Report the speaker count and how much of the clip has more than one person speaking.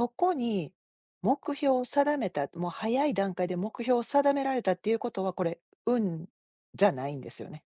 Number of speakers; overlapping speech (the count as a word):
one, no overlap